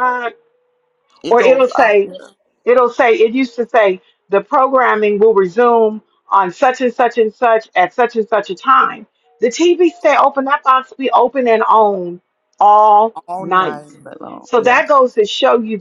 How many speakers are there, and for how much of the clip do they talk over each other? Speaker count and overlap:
2, about 10%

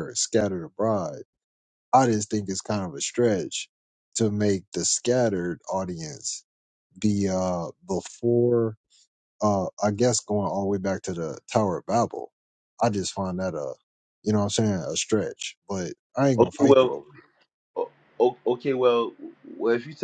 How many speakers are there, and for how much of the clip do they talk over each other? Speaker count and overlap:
2, about 3%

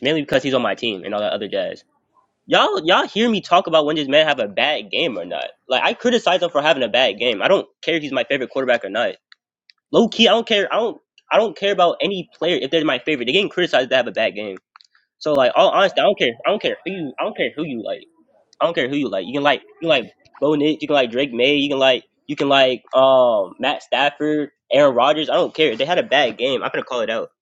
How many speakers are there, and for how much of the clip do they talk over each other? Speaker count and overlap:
1, no overlap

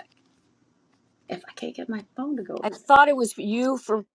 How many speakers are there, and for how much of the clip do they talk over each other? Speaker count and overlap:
2, about 4%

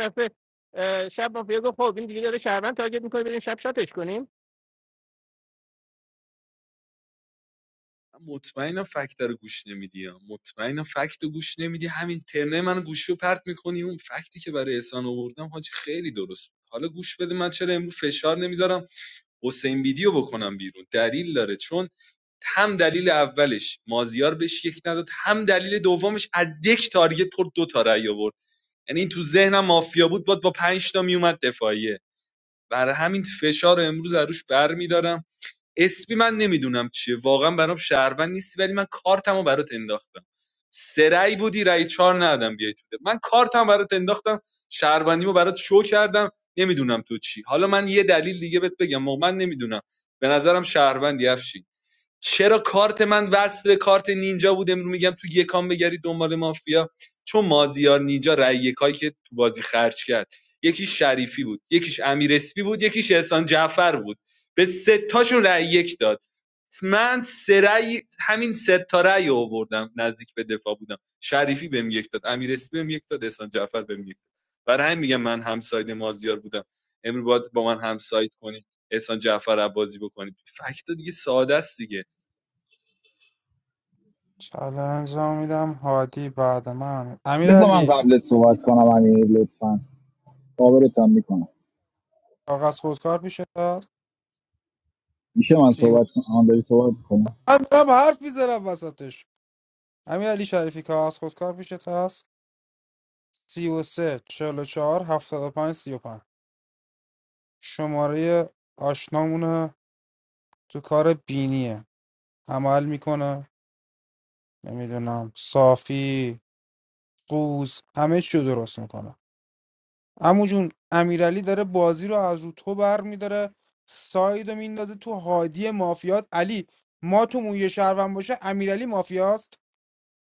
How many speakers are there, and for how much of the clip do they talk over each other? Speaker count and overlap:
4, about 1%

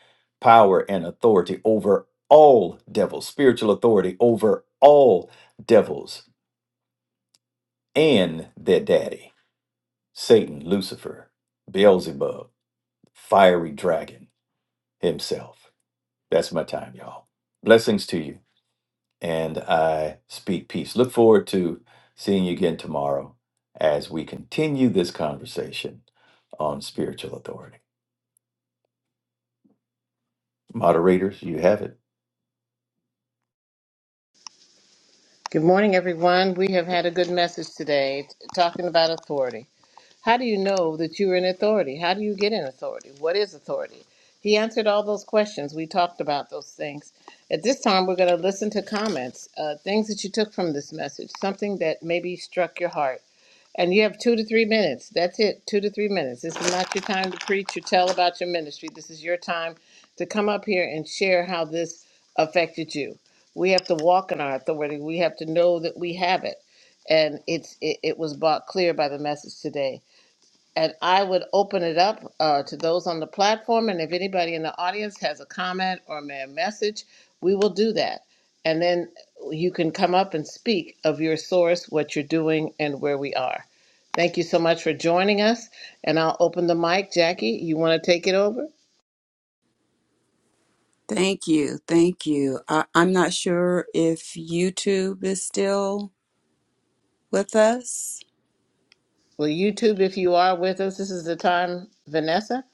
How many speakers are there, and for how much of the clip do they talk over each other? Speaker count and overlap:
3, no overlap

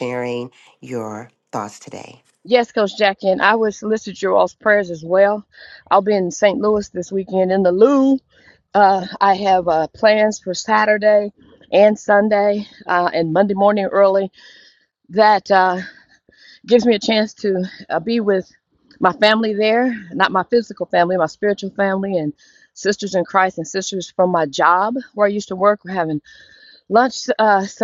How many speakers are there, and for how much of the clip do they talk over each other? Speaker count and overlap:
2, no overlap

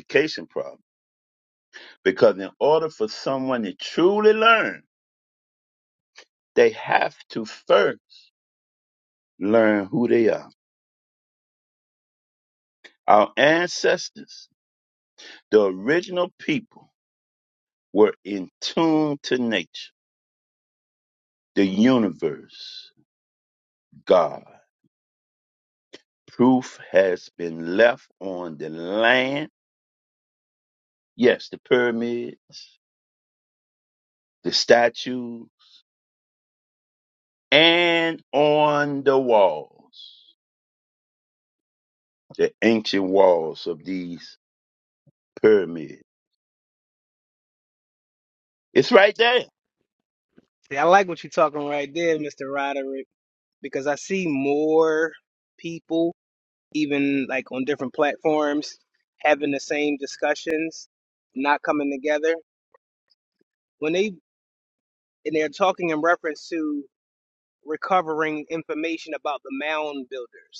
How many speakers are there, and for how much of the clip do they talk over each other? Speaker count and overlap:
2, no overlap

